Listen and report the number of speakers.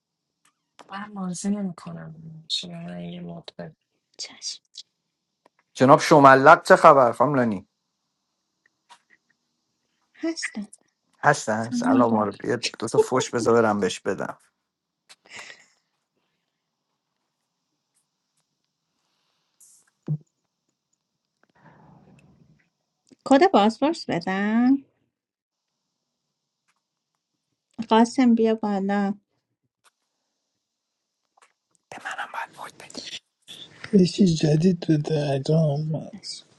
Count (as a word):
four